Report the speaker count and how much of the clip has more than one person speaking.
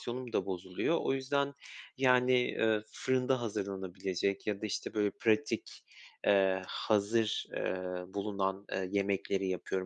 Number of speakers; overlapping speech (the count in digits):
1, no overlap